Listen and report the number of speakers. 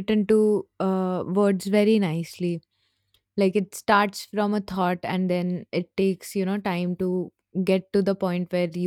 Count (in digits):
1